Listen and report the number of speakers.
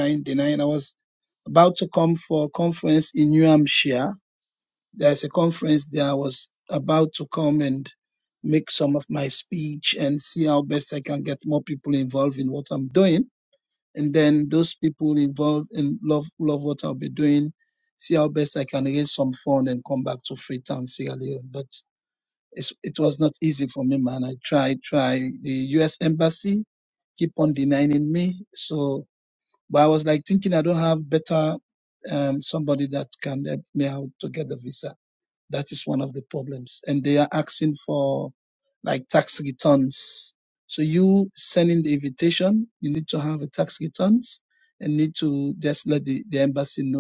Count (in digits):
1